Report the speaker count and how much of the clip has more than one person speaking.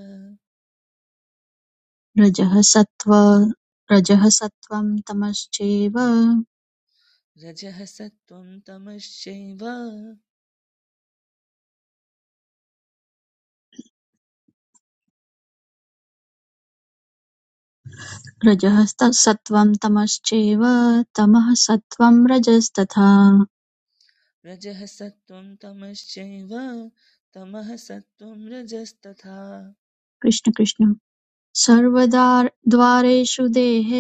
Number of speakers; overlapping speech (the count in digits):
2, no overlap